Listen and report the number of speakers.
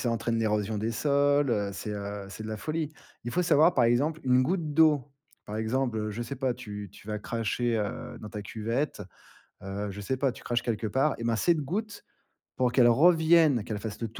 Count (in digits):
1